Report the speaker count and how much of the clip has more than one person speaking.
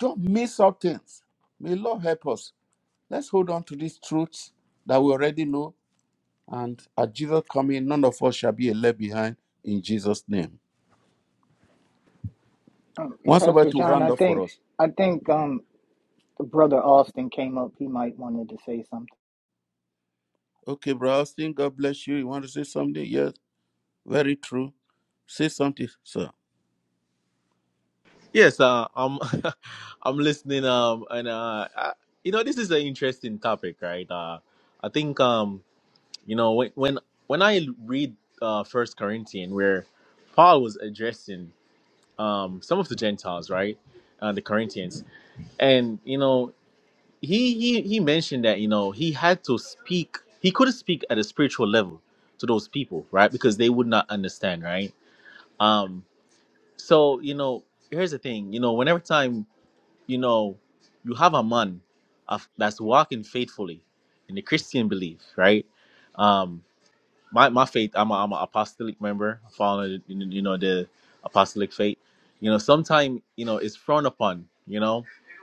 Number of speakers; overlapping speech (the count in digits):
3, about 2%